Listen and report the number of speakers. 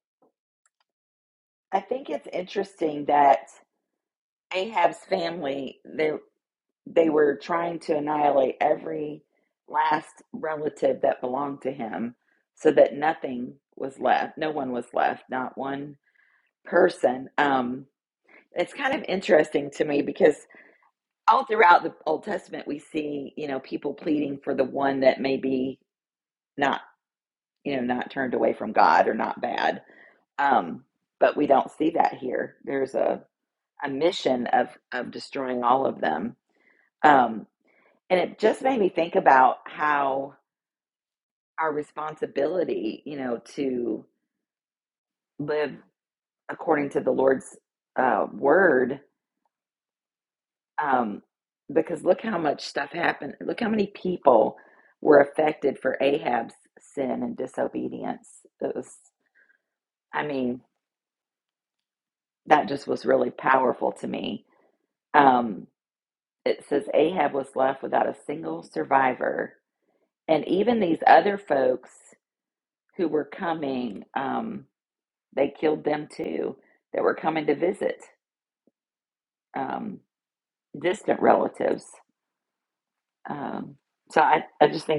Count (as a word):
one